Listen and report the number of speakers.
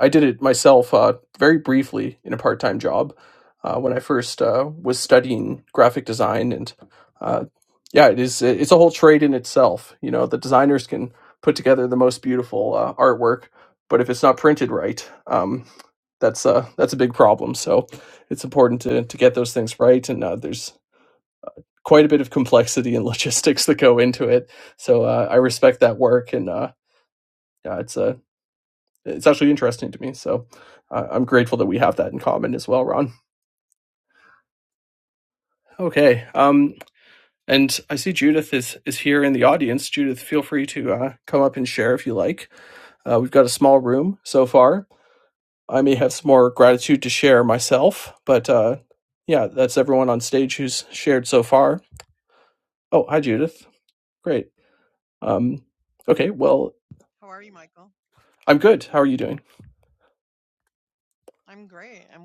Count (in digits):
2